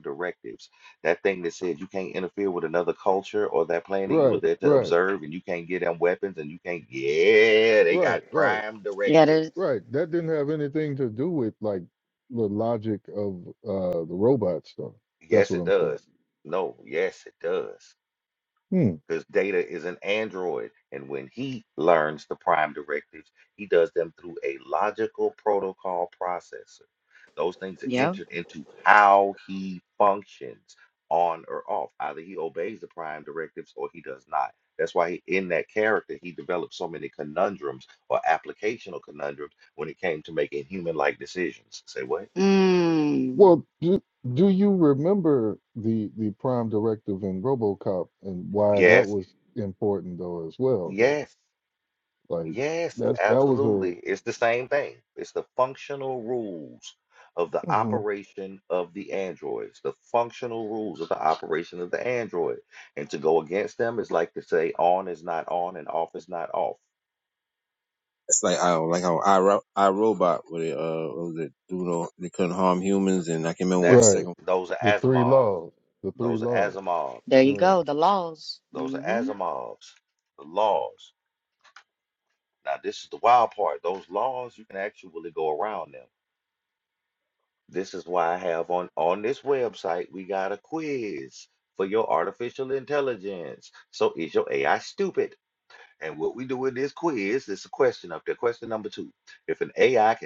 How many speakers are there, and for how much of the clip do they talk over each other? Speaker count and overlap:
4, about 7%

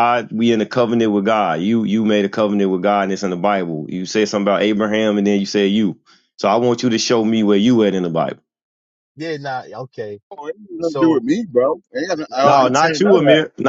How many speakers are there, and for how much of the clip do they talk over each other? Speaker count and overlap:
3, about 11%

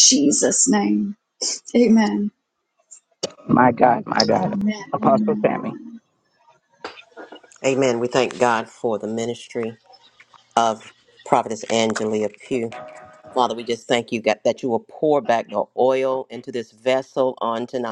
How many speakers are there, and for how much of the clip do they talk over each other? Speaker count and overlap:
3, about 2%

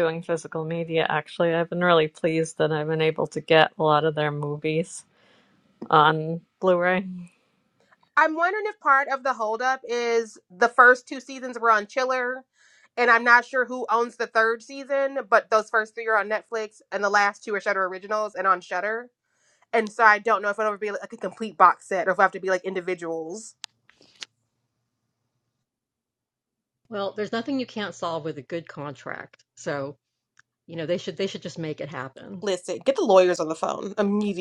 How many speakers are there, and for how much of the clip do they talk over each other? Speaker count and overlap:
3, no overlap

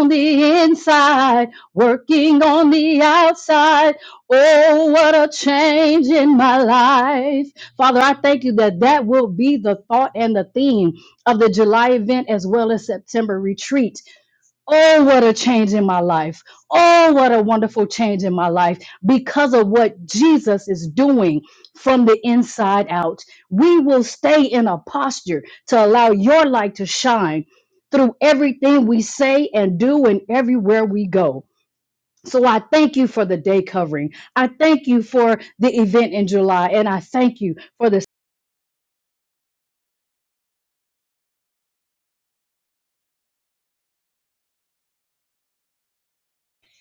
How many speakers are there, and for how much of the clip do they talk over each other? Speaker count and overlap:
1, no overlap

